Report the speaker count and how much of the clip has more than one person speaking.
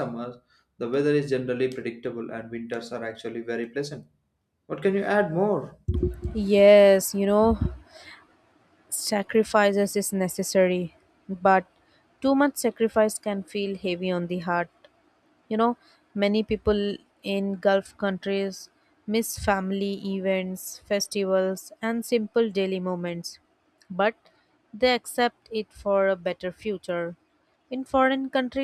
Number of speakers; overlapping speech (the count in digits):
2, no overlap